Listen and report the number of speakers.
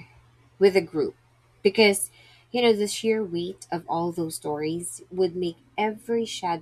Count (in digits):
1